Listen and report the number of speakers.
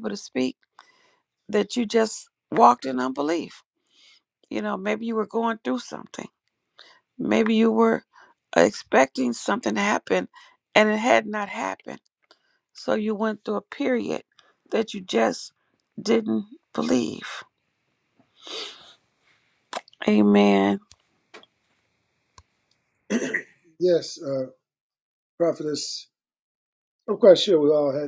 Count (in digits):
2